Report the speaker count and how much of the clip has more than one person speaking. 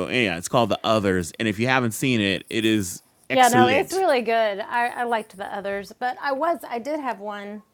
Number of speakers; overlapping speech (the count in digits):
2, about 8%